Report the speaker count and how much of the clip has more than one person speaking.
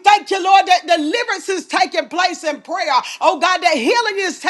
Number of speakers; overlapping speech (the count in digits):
1, no overlap